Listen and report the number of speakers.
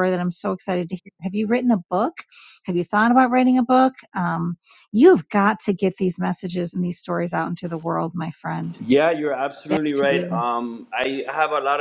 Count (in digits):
2